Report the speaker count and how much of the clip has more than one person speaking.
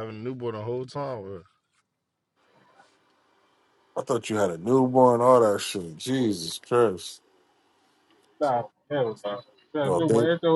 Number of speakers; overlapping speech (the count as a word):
three, about 4%